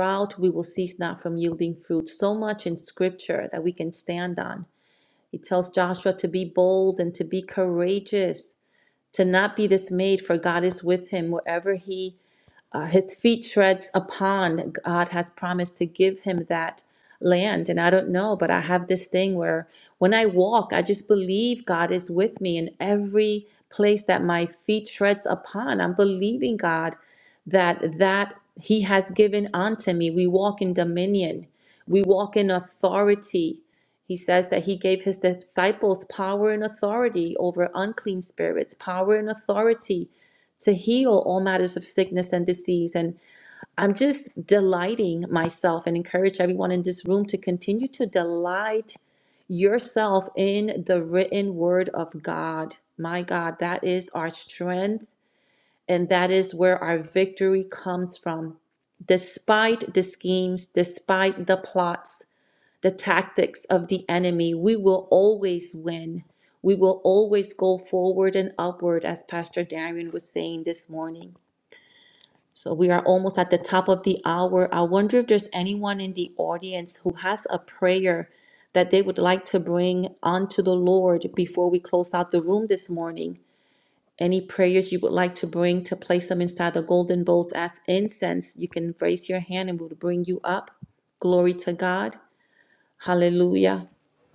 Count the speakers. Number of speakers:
one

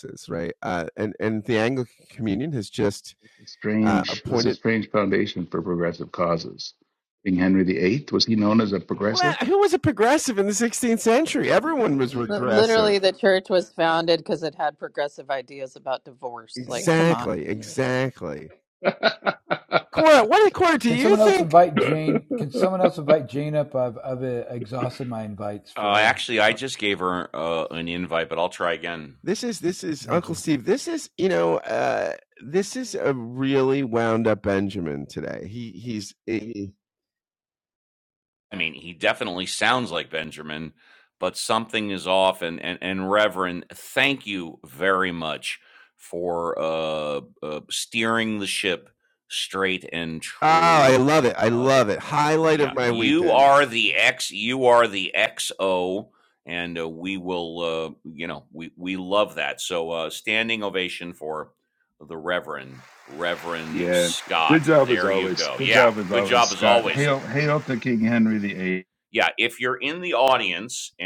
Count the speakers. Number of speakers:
five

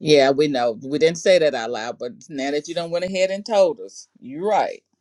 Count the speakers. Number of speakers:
one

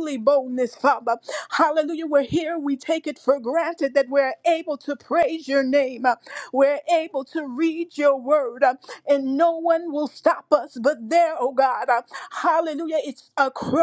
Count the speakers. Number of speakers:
one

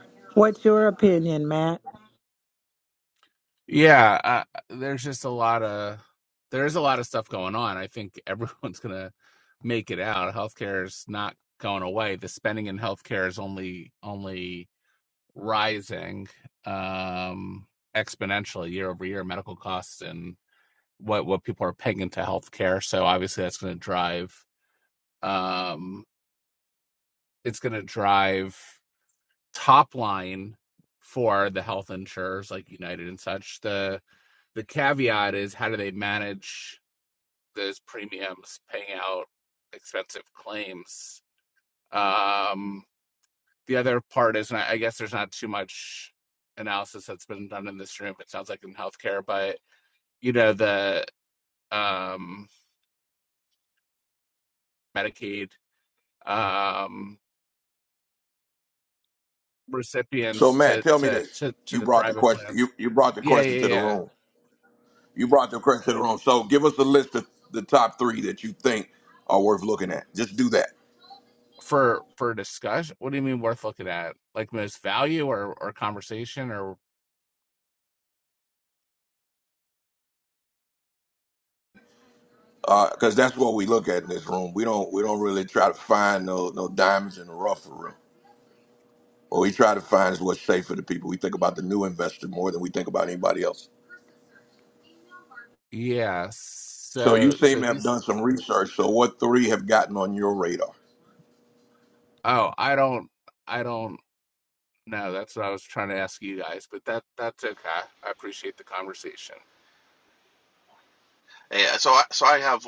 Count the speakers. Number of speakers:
four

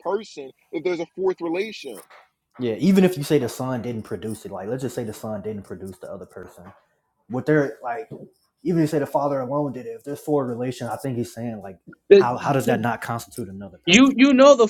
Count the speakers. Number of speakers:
three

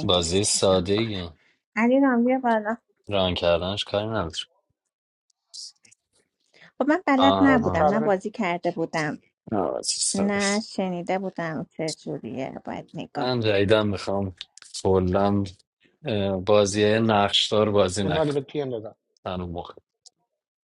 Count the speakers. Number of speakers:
three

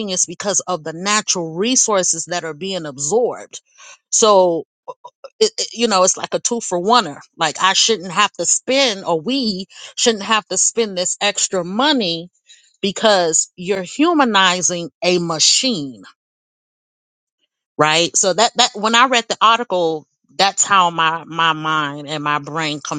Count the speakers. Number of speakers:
one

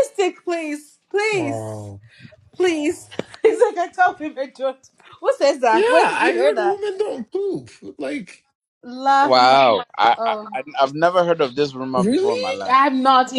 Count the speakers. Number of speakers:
three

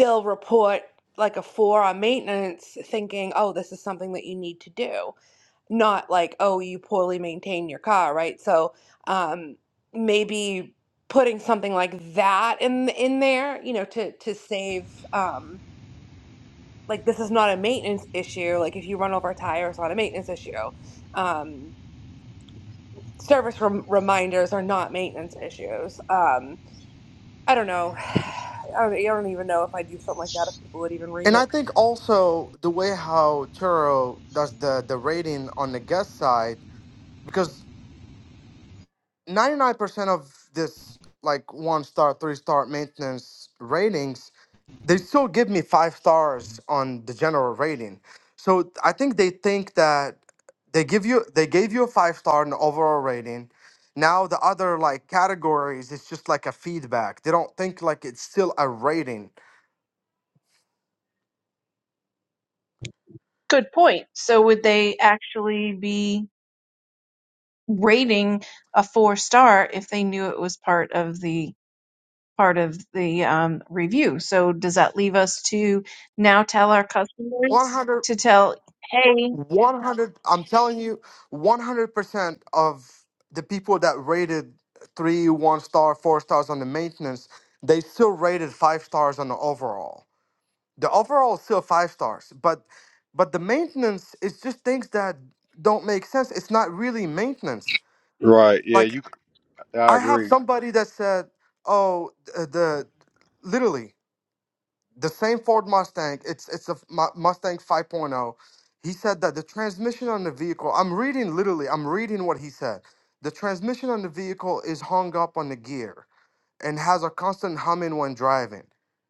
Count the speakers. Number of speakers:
four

